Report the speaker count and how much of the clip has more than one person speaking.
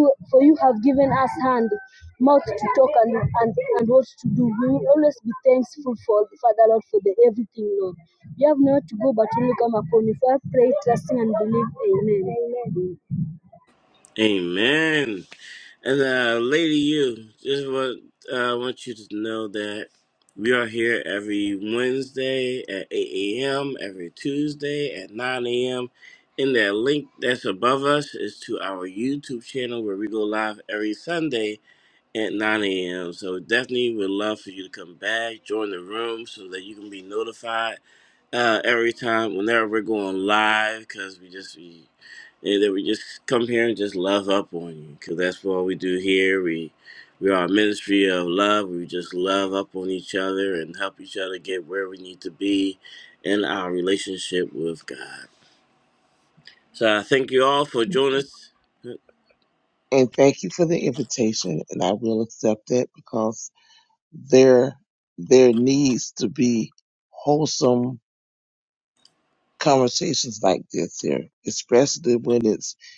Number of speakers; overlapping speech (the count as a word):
three, no overlap